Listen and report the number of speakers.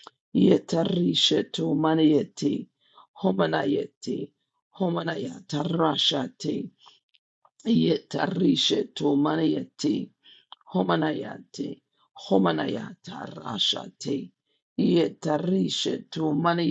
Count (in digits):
1